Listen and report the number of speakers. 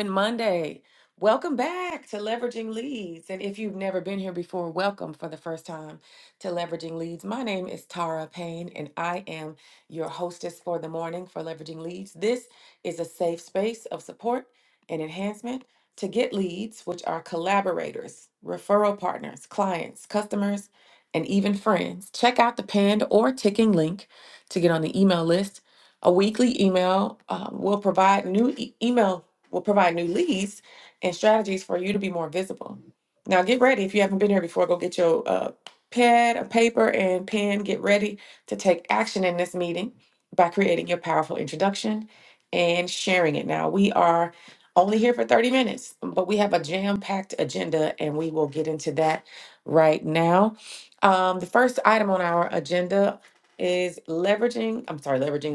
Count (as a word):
one